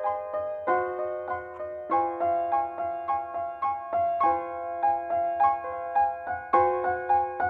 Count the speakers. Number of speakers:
0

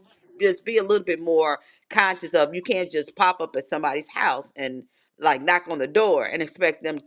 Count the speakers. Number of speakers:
1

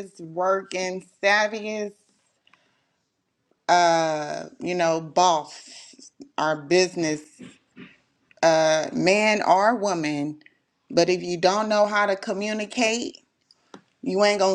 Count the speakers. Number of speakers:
1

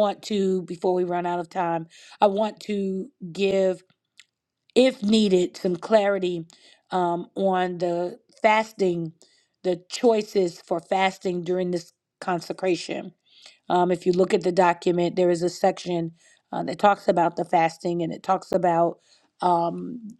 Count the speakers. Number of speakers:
1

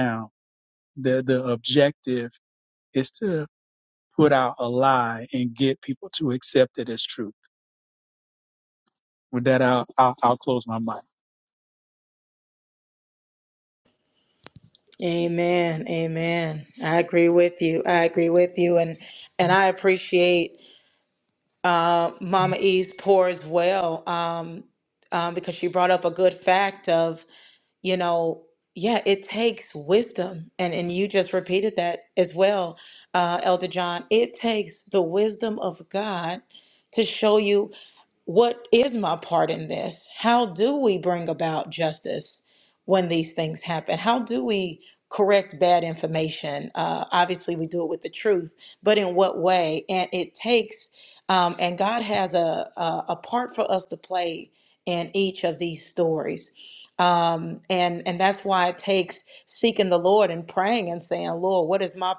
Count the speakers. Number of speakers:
2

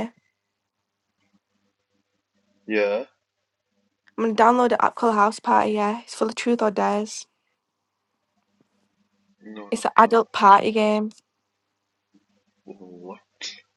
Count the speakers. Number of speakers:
2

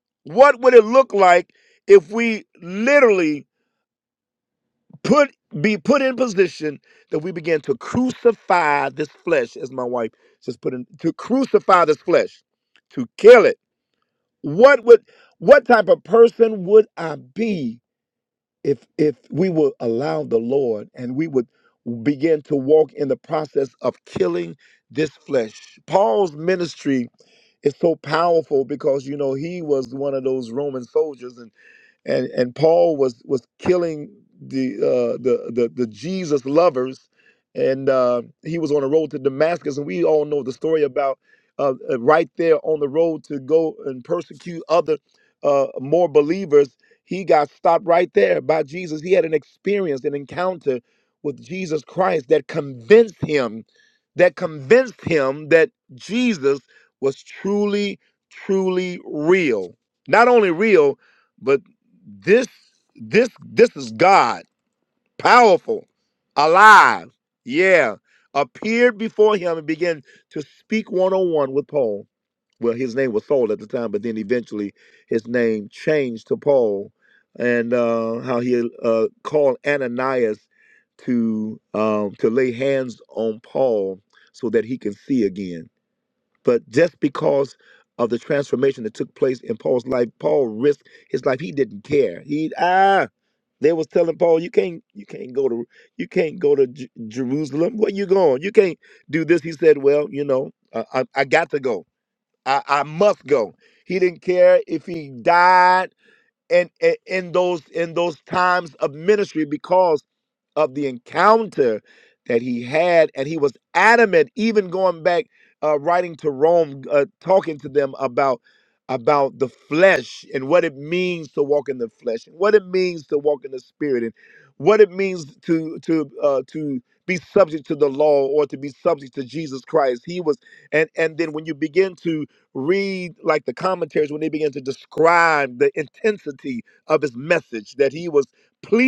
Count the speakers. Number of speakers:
1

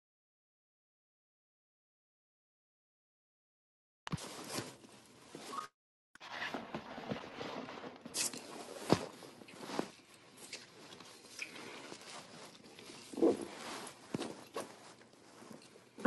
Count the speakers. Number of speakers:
0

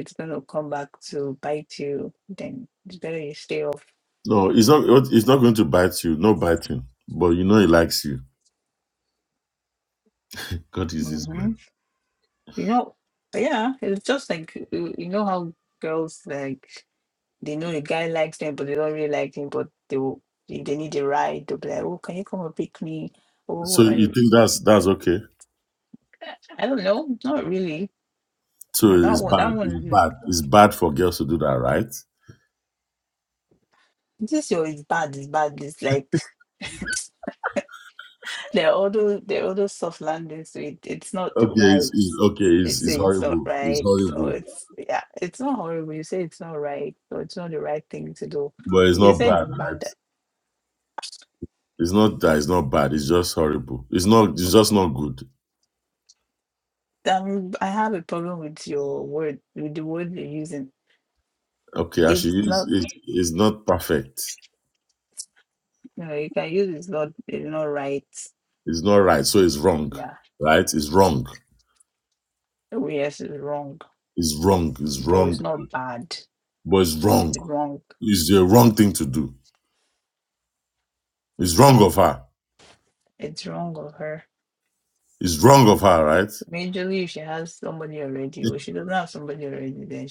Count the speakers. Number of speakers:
2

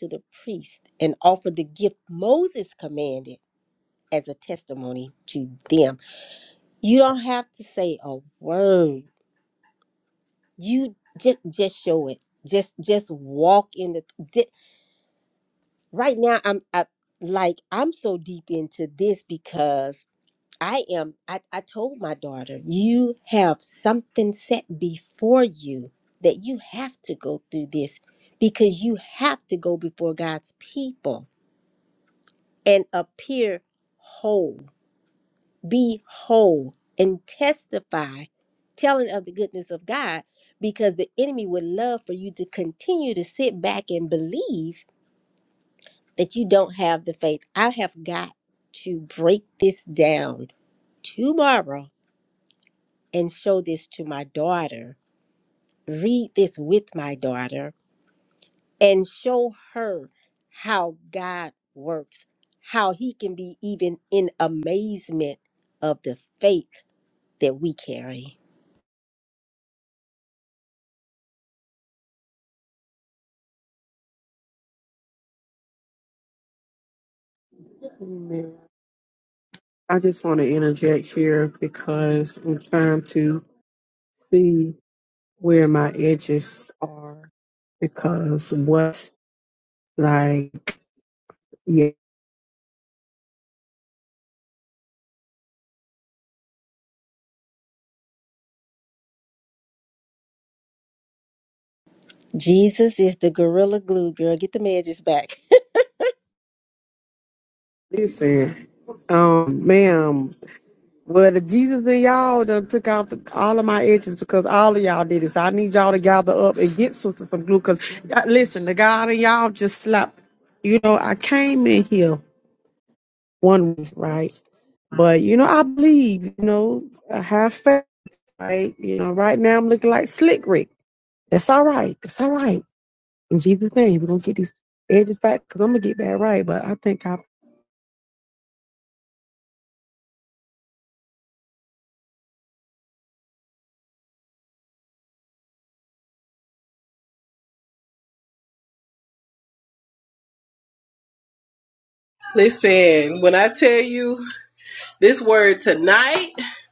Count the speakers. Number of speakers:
3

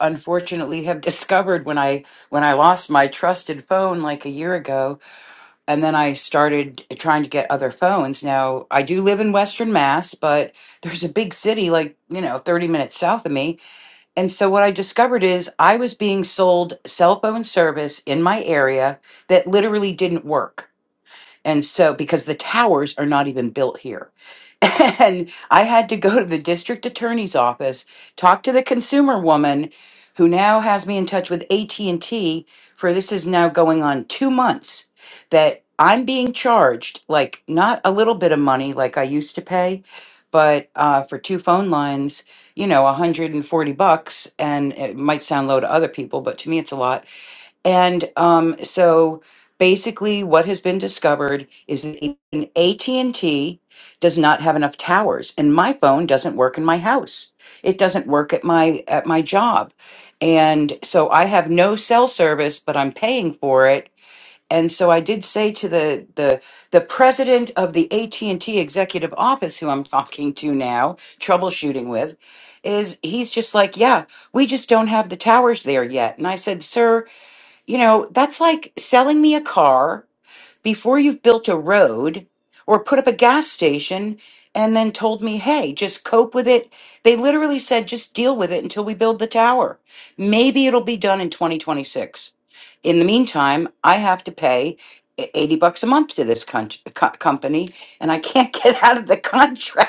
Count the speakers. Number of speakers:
1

